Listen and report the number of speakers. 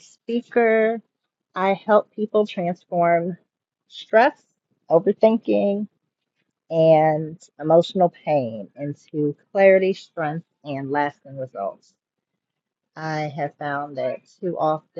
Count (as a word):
one